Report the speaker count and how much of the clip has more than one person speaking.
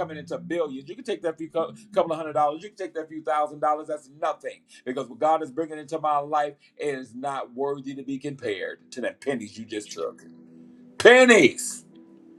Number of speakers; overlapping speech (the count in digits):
1, no overlap